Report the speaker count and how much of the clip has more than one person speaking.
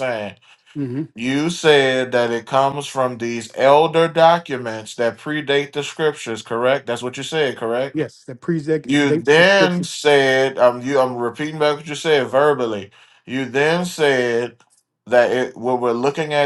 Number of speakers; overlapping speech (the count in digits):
2, about 6%